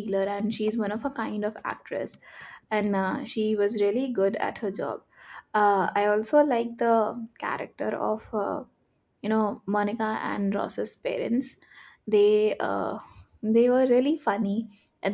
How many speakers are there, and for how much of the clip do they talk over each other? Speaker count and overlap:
1, no overlap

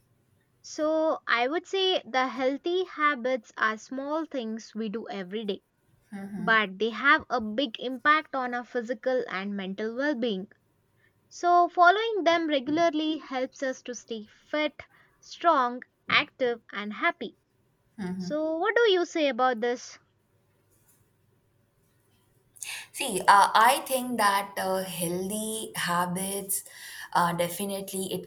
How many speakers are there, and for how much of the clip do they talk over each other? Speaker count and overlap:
2, no overlap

